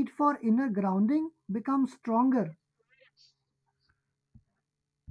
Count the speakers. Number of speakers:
1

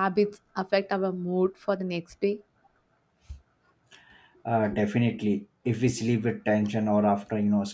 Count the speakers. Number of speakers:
2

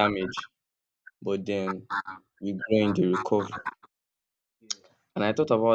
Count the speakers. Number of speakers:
1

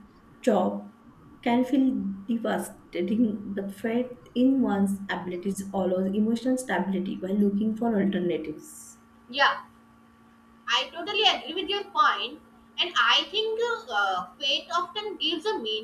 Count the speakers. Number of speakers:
2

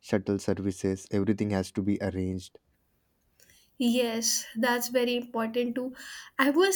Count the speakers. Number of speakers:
2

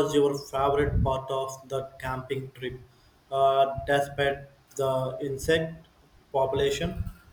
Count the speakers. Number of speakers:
1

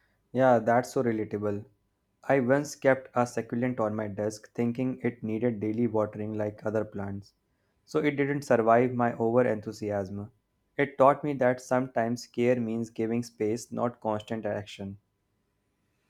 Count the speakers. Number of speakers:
1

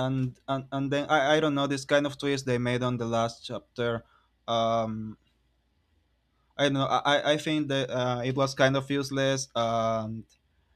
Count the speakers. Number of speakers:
1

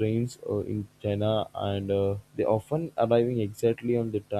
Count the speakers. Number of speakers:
1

